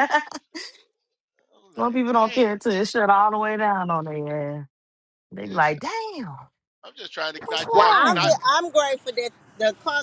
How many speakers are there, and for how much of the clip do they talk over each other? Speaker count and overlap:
three, about 21%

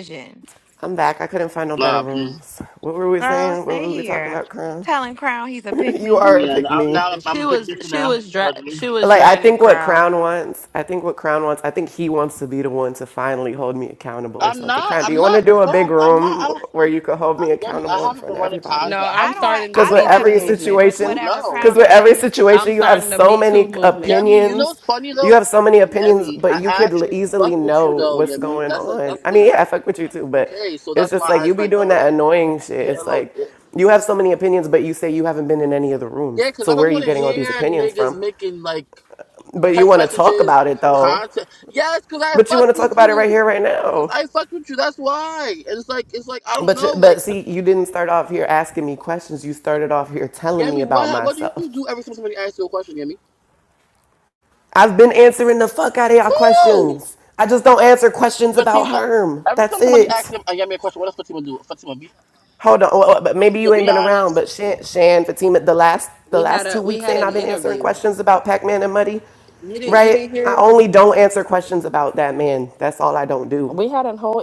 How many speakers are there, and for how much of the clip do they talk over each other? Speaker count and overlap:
four, about 42%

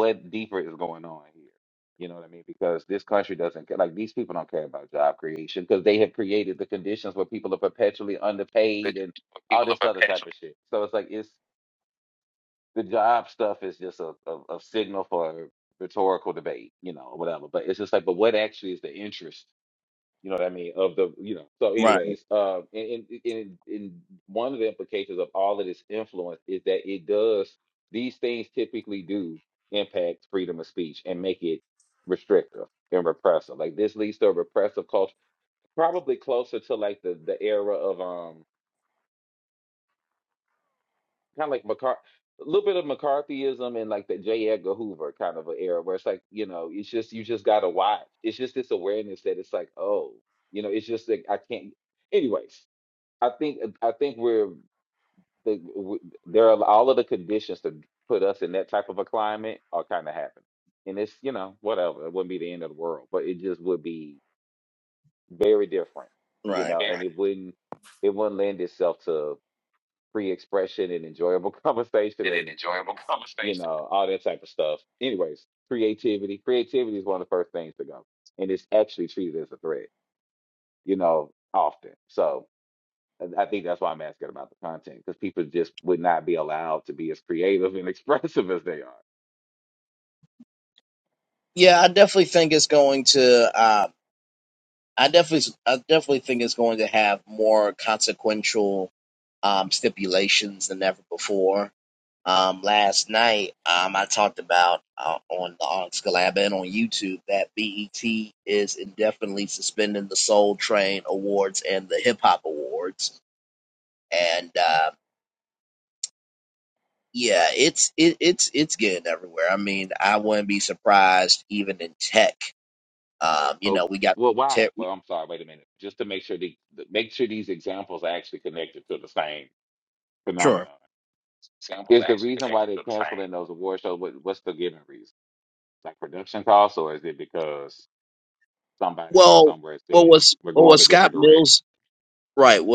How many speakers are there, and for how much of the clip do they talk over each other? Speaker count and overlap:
two, about 2%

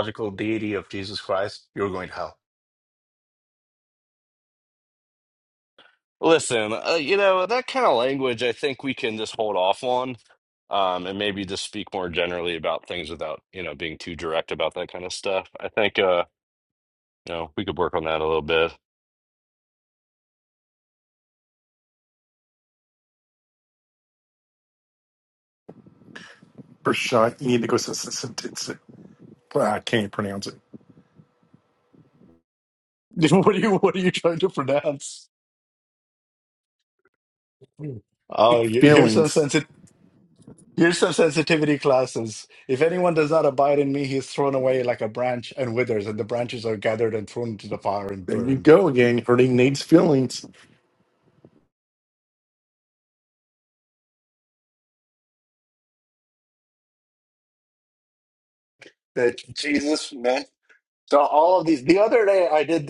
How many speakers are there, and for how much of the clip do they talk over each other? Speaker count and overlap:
three, about 2%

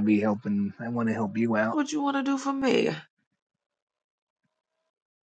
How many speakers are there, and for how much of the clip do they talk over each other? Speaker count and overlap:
two, about 1%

